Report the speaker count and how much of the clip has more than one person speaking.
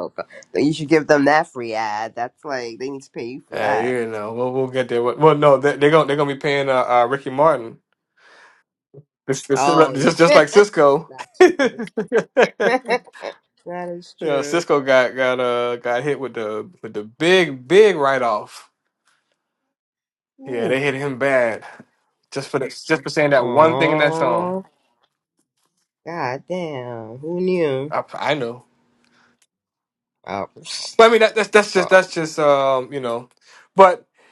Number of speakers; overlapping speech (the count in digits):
2, about 9%